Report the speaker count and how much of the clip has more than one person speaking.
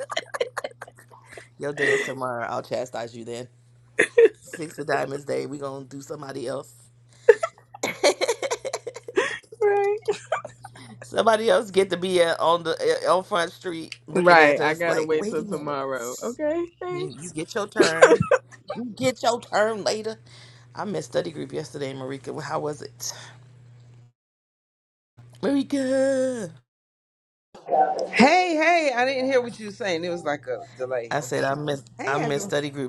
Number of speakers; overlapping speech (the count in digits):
3, about 8%